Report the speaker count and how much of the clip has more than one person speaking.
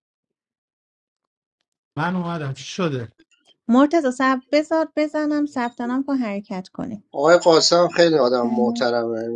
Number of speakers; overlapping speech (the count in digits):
3, about 4%